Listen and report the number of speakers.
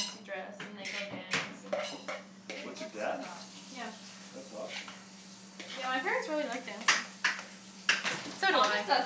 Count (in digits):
3